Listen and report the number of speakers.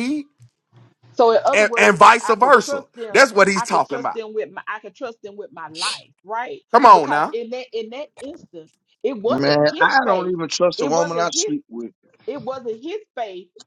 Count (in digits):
3